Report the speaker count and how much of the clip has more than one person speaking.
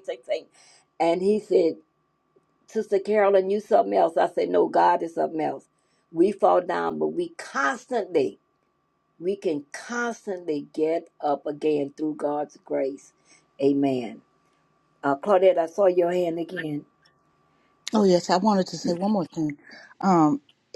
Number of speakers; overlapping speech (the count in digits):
2, no overlap